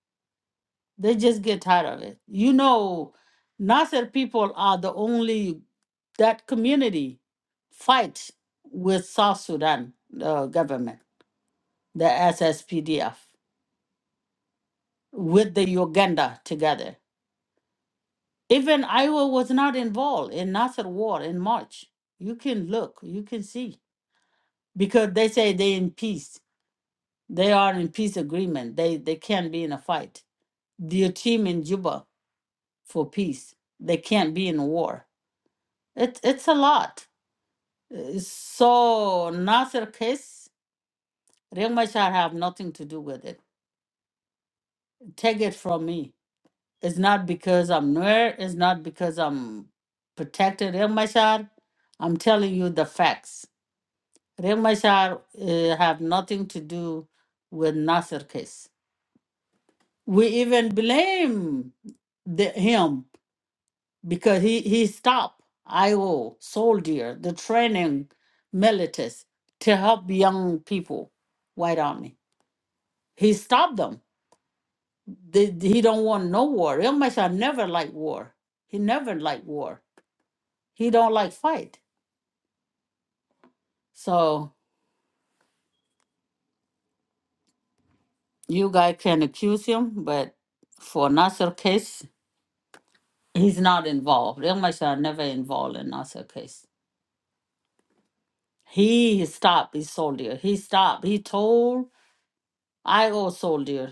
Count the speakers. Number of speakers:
one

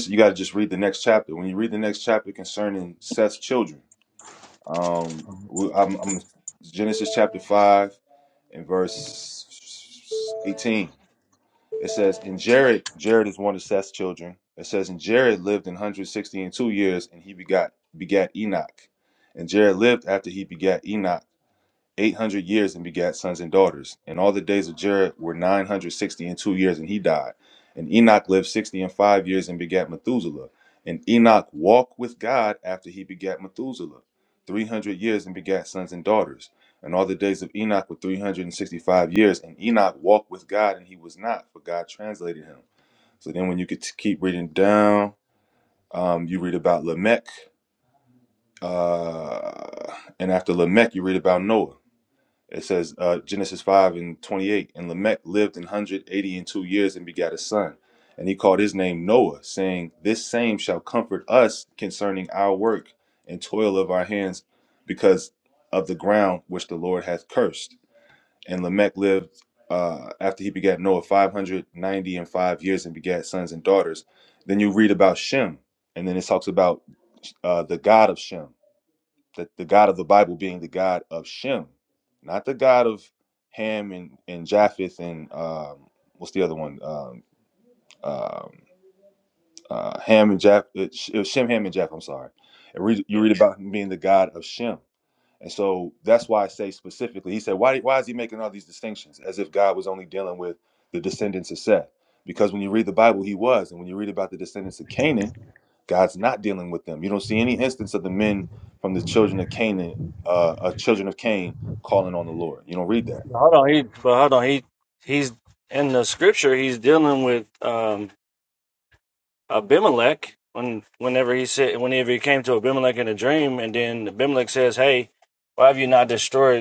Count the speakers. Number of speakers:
two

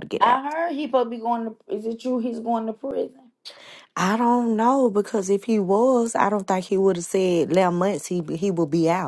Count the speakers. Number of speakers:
two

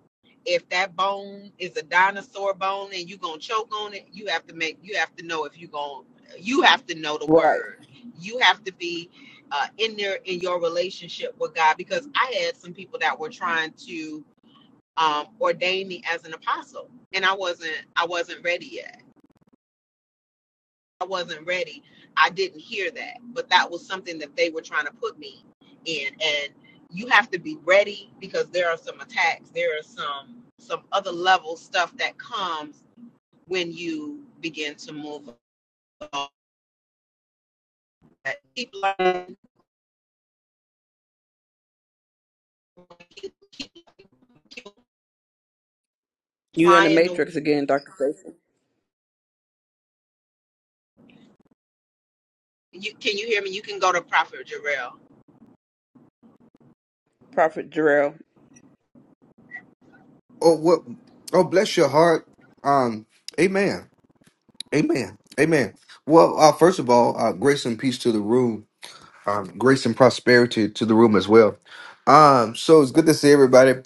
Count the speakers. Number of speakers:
three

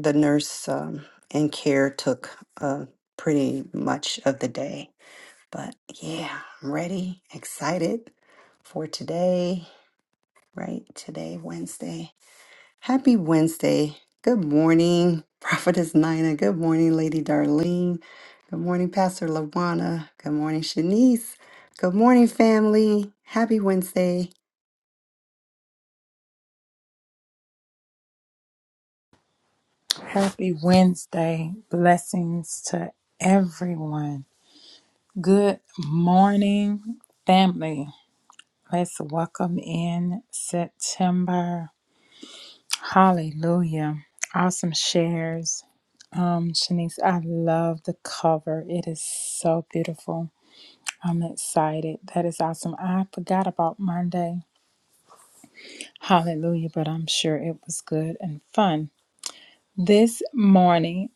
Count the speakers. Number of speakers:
two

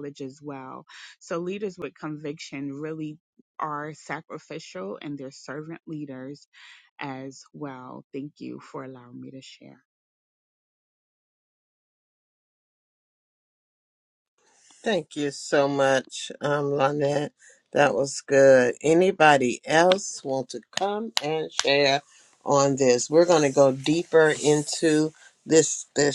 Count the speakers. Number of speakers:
two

